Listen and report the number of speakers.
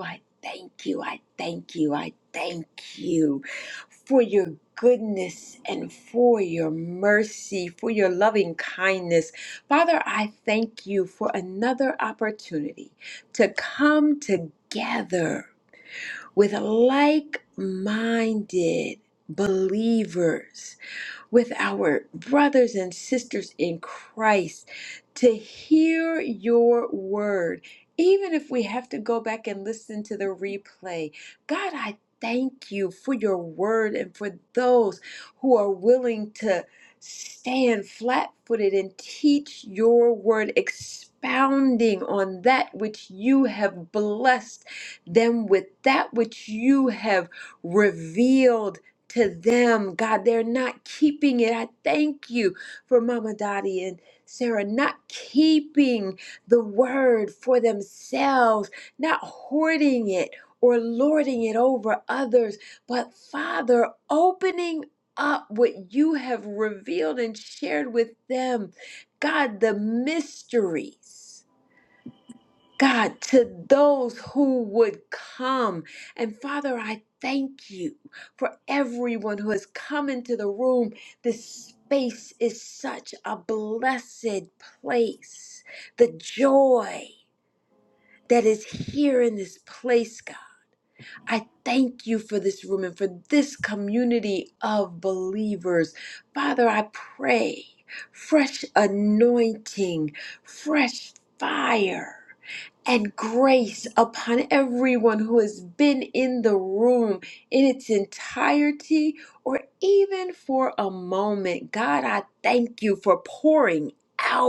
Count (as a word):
one